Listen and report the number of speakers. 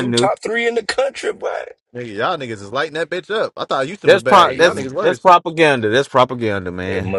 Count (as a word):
three